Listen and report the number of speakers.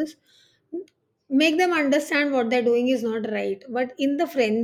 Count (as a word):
one